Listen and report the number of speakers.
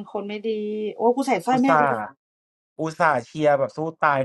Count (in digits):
2